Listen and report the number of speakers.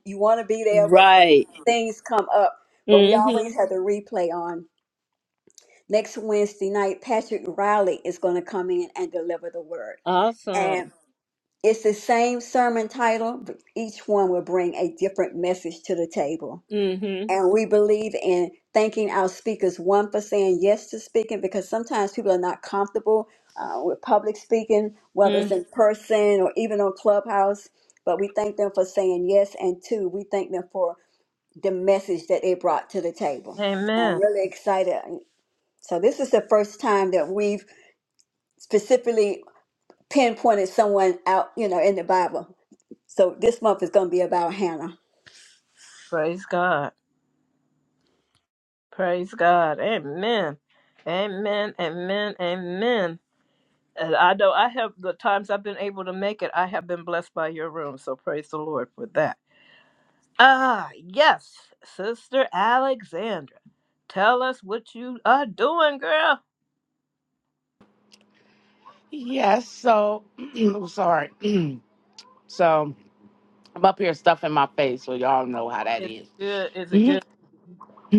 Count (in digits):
3